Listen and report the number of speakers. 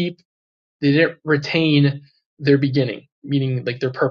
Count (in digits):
1